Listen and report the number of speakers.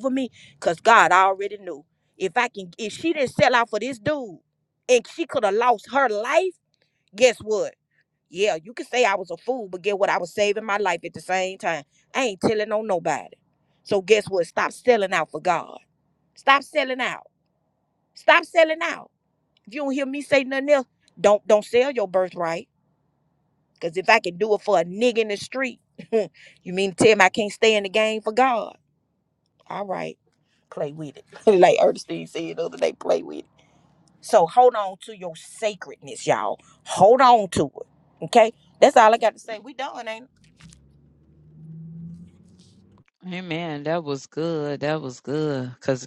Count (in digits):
2